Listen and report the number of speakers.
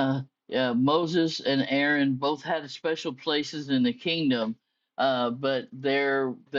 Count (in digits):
1